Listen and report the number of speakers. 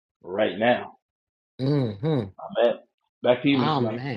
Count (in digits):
2